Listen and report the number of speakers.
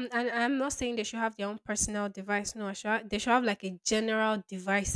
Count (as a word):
one